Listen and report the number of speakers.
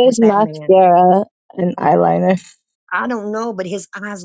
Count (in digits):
2